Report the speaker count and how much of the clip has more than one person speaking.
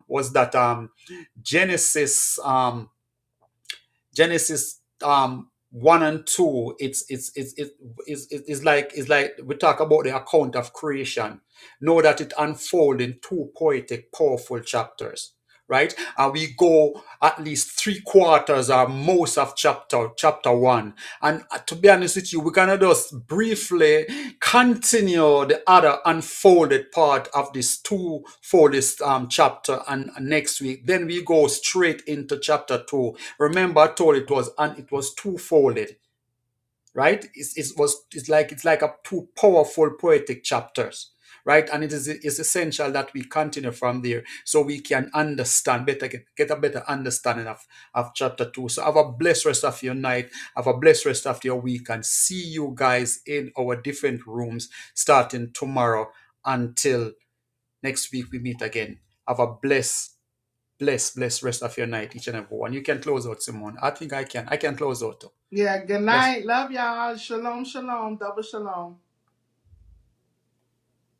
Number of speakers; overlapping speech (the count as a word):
two, under 1%